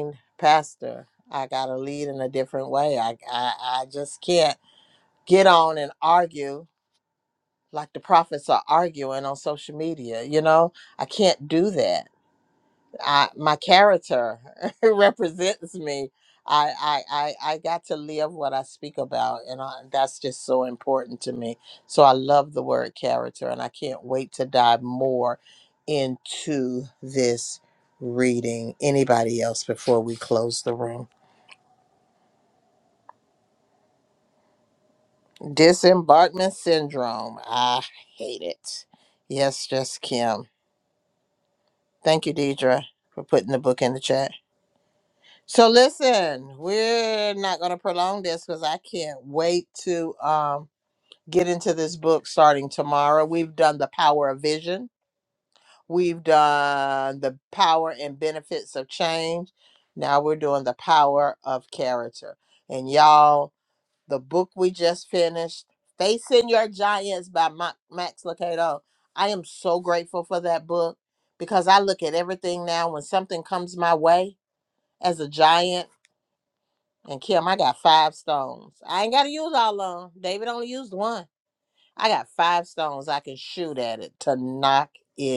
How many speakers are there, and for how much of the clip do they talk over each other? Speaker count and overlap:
one, no overlap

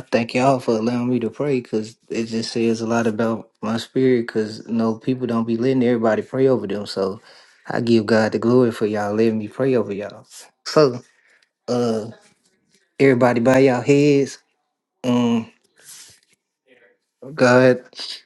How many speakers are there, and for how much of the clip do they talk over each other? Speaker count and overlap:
one, no overlap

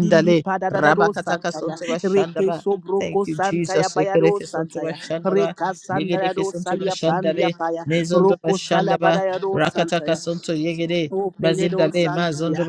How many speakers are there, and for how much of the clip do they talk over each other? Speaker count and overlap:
two, about 81%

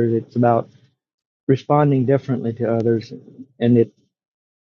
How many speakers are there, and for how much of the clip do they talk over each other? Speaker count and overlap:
one, no overlap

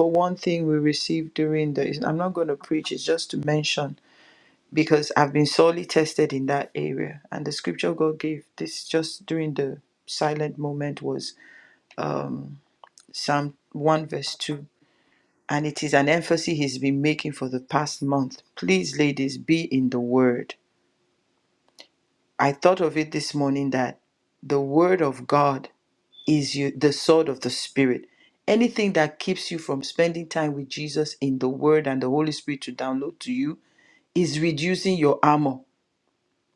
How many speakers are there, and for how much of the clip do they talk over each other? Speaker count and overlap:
one, no overlap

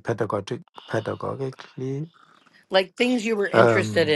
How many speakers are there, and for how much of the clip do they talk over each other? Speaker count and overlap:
two, about 13%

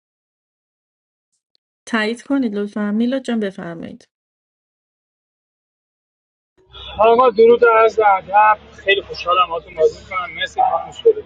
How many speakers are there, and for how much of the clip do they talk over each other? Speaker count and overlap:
two, no overlap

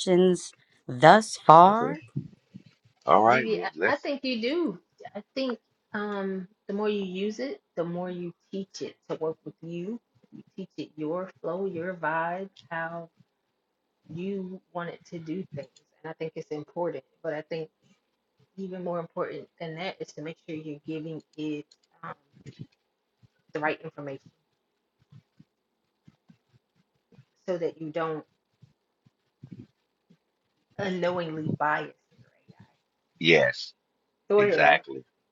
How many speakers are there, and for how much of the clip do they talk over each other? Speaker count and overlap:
three, about 4%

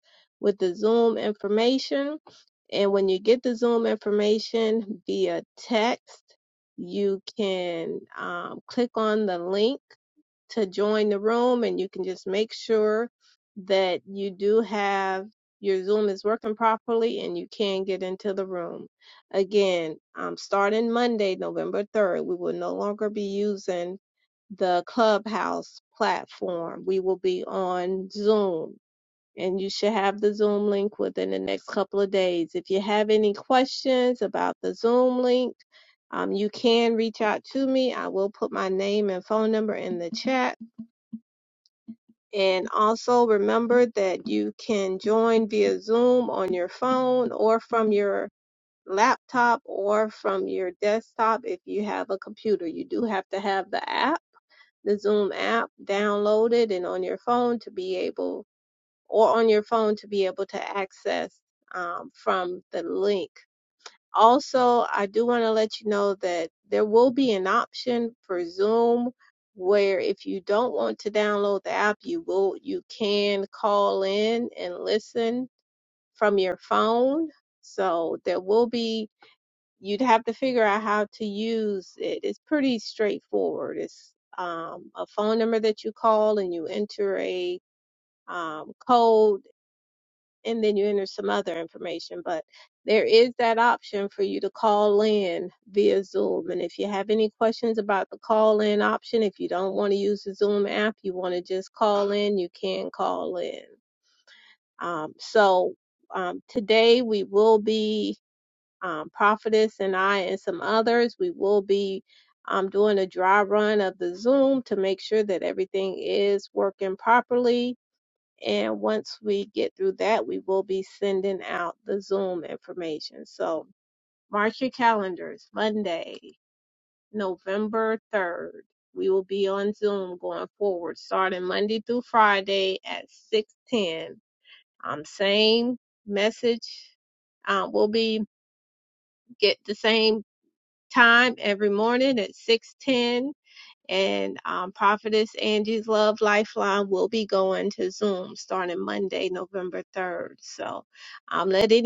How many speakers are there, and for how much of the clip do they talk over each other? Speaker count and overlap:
one, no overlap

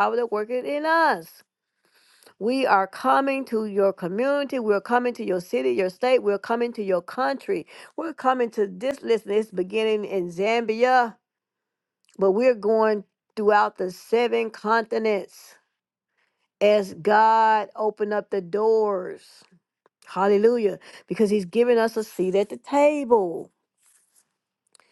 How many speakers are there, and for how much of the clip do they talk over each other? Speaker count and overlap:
one, no overlap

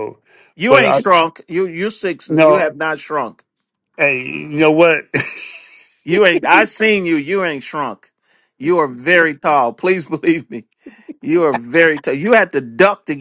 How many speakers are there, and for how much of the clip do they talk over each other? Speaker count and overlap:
two, about 6%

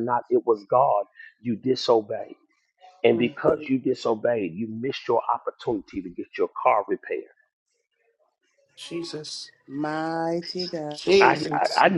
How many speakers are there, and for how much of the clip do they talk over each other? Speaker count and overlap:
three, about 6%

